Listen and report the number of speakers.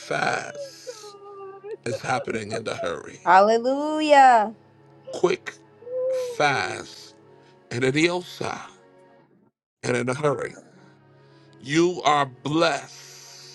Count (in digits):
3